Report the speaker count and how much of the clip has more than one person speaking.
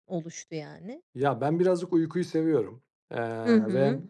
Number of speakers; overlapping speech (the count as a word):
two, about 14%